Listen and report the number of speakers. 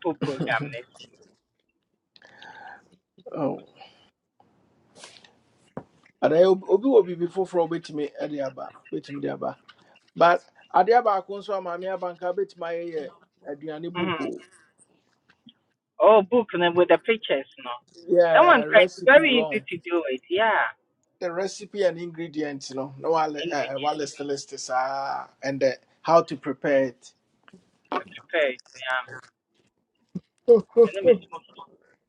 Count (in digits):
2